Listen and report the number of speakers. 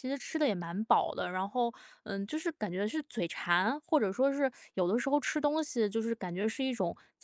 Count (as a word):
one